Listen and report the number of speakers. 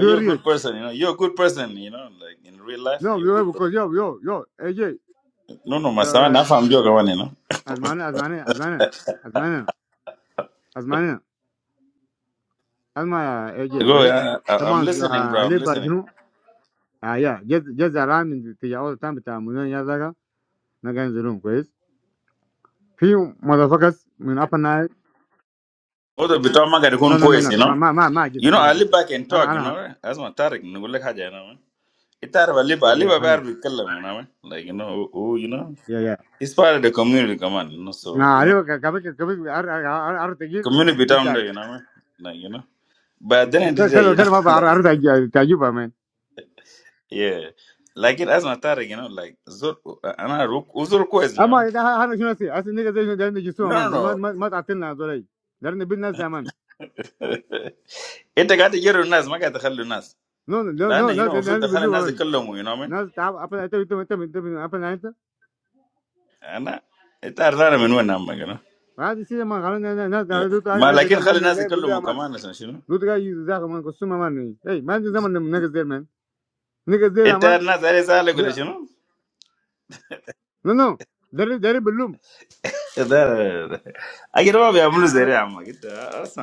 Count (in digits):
2